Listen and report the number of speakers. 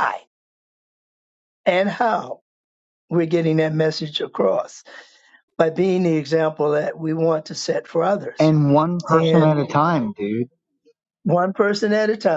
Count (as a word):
two